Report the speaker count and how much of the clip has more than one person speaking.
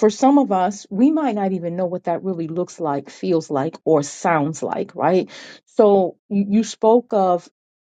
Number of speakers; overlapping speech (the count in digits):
1, no overlap